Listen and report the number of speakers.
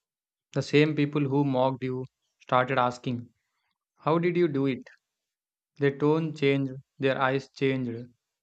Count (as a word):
one